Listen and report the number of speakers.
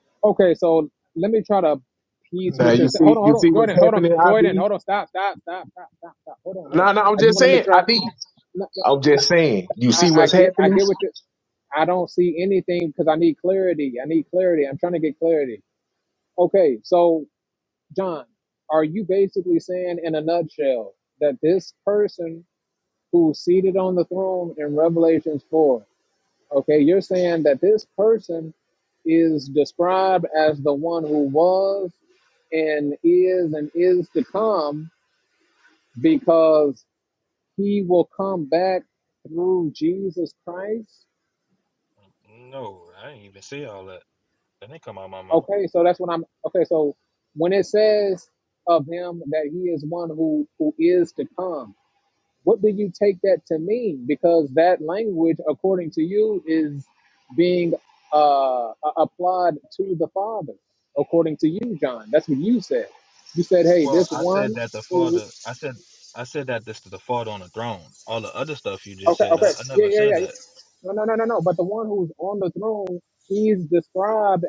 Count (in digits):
3